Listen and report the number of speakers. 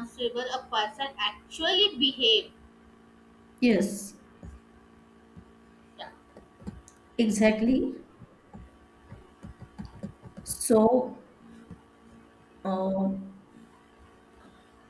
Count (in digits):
2